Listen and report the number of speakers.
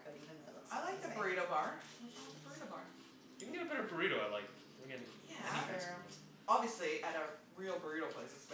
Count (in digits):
3